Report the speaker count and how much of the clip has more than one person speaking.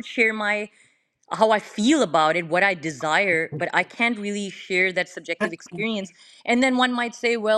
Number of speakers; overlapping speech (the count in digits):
1, no overlap